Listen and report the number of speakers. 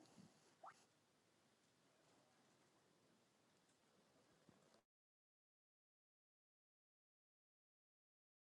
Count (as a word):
zero